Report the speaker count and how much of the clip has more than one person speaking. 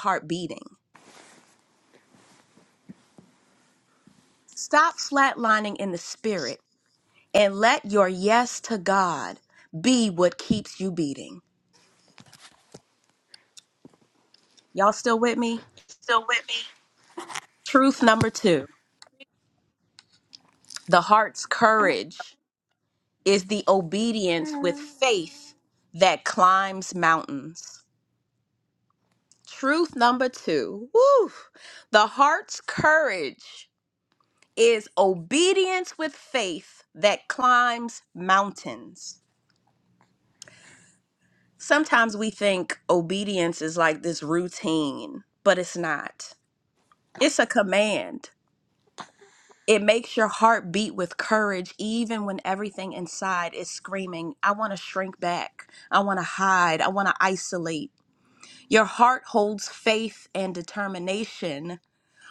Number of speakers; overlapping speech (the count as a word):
two, about 1%